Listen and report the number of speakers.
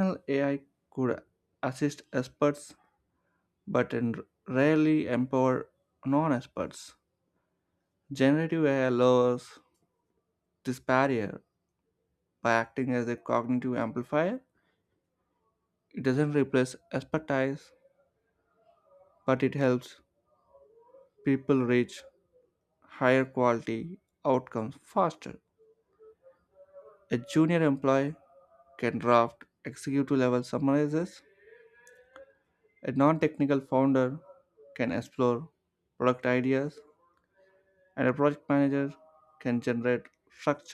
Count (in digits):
1